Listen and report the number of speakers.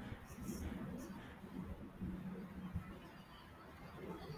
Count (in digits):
0